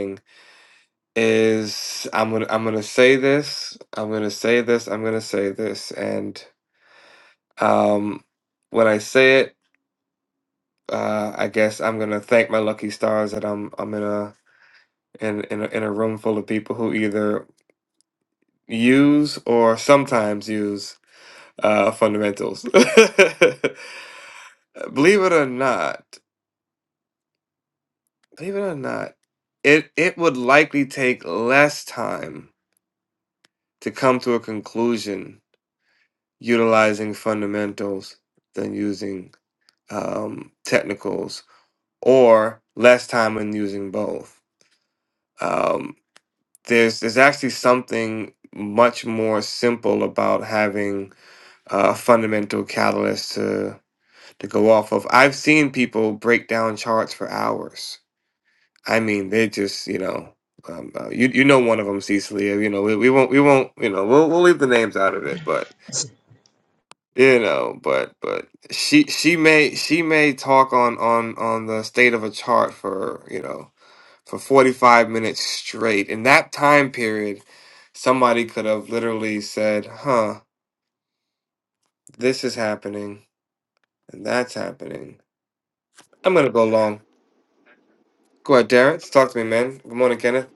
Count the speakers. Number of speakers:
1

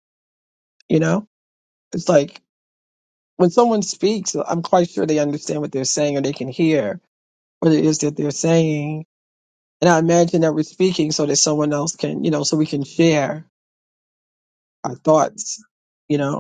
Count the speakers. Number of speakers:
1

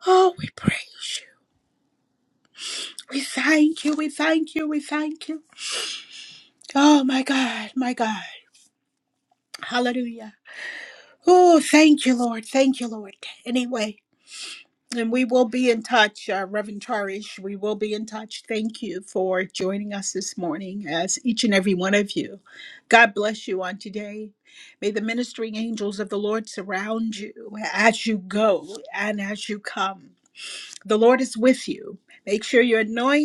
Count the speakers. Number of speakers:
1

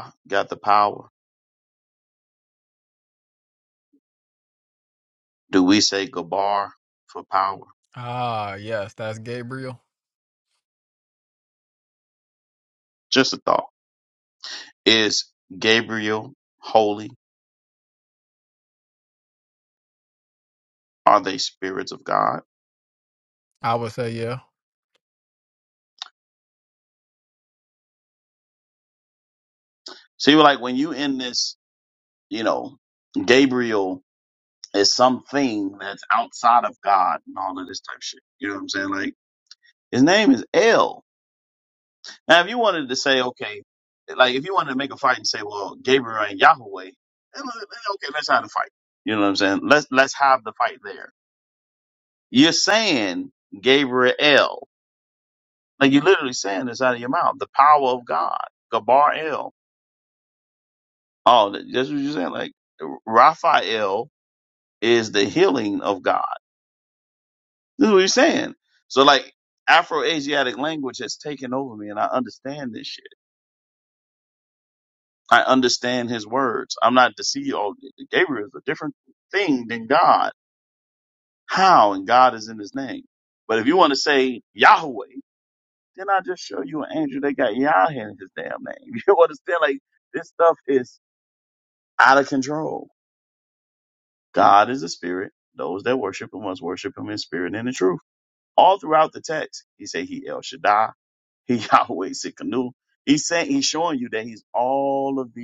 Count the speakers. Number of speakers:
2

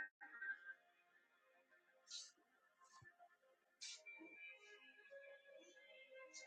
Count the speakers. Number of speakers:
0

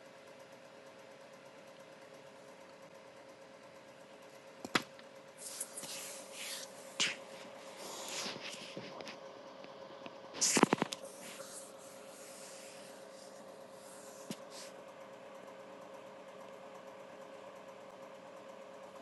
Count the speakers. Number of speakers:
0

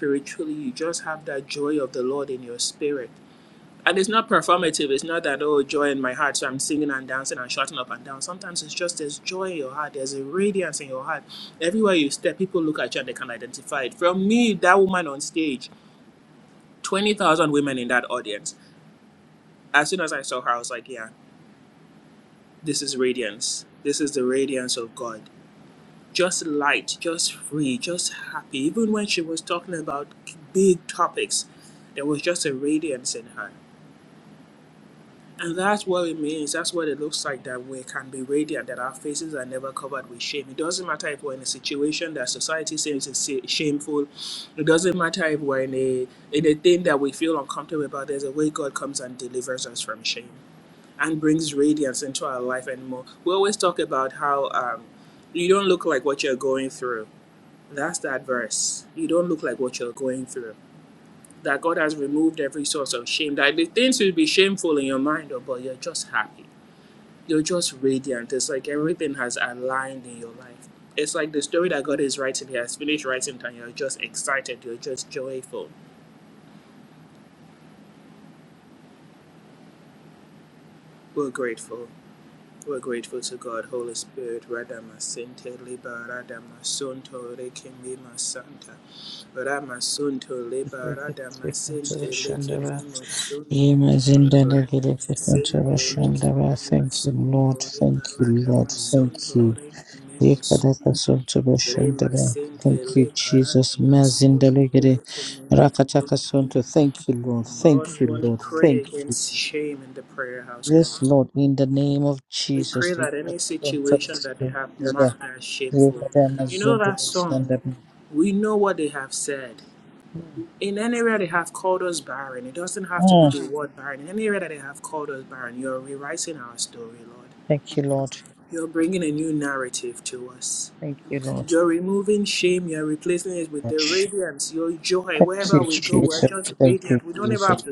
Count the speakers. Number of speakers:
2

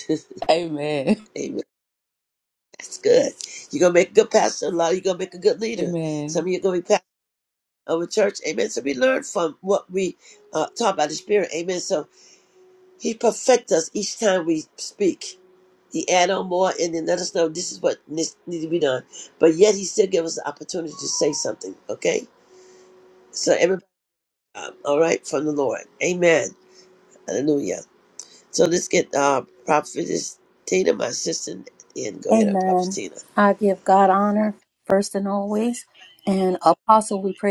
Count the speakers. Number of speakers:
3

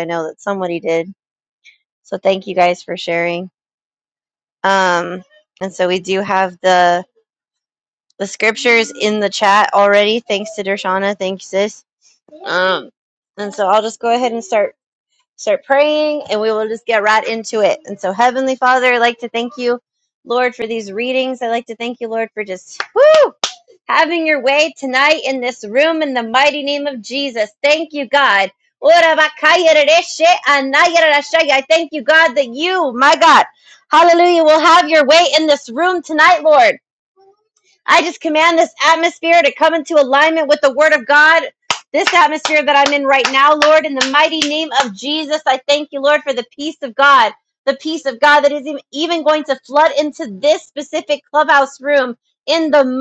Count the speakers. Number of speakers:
1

